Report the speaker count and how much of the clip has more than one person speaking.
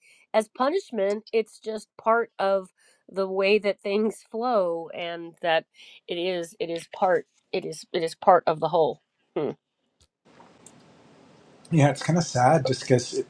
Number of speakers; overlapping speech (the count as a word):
two, no overlap